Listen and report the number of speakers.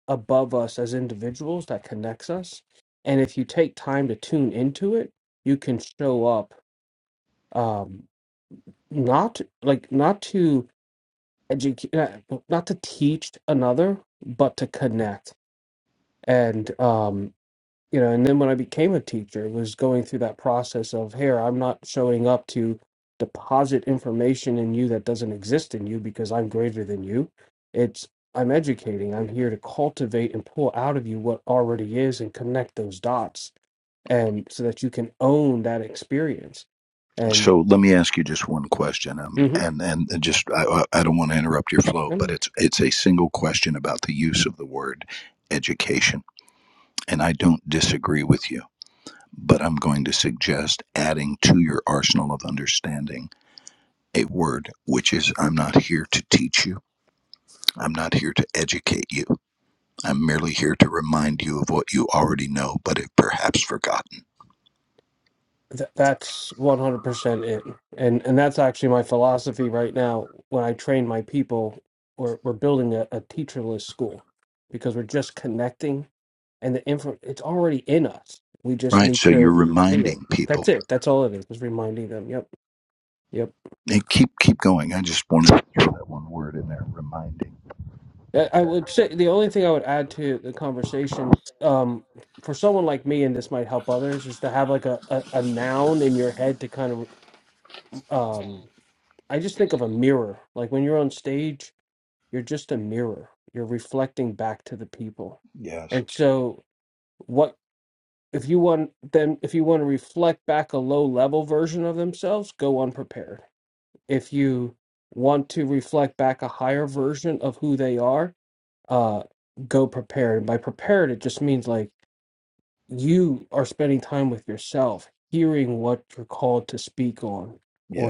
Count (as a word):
two